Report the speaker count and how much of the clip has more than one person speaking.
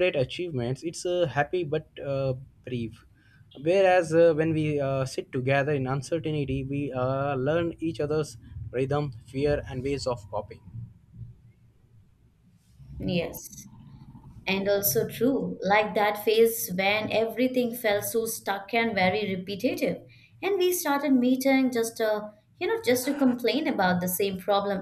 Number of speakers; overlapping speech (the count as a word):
two, no overlap